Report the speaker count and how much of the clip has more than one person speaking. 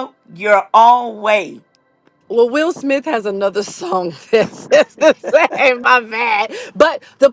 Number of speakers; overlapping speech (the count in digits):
2, no overlap